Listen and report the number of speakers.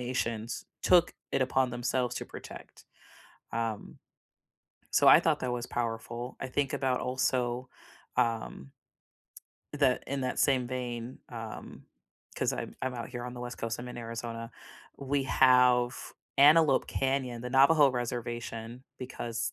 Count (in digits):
1